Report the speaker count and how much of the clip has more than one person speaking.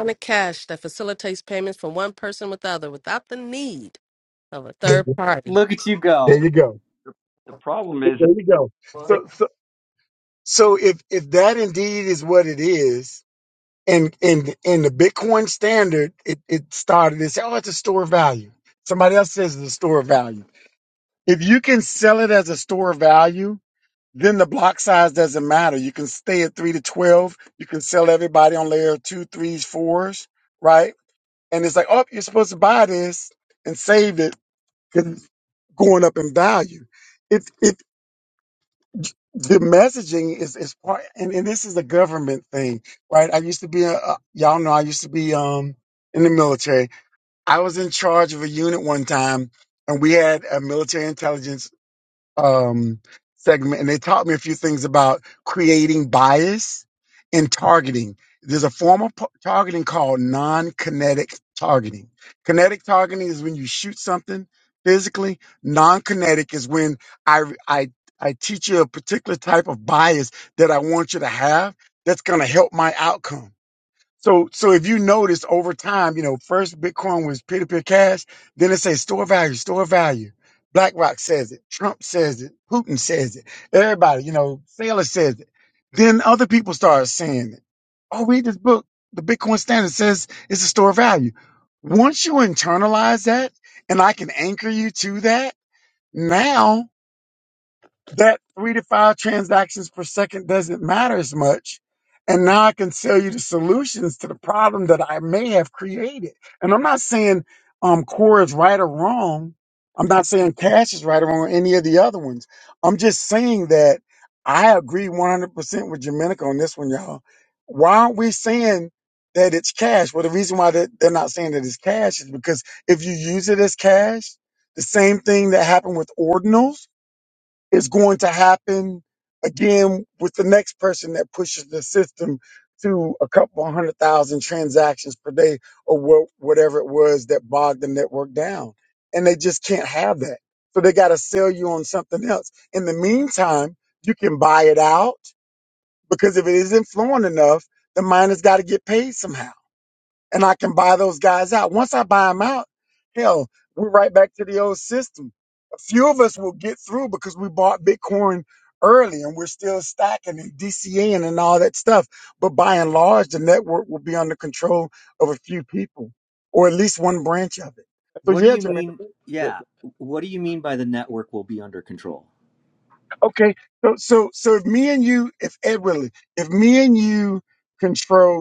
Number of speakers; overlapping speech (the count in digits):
4, about 1%